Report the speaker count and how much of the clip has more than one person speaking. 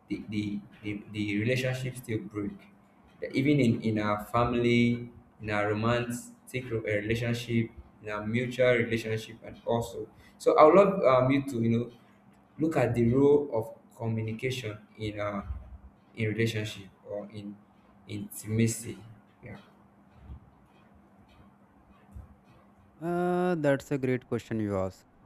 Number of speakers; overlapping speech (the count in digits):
2, no overlap